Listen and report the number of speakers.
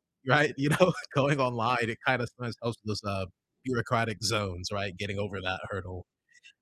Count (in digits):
1